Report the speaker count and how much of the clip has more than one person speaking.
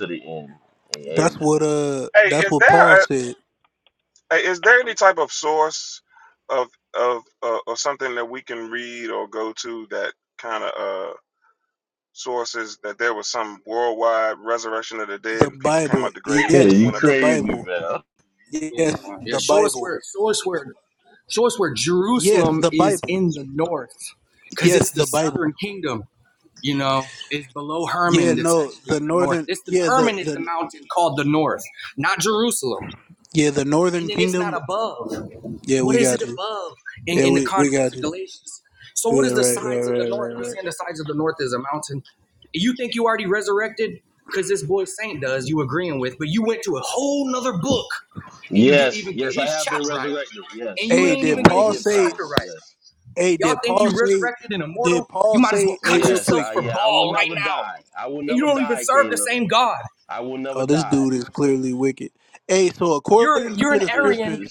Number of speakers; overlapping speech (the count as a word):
four, about 35%